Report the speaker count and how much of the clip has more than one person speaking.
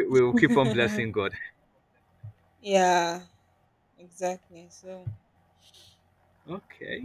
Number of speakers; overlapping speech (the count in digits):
2, no overlap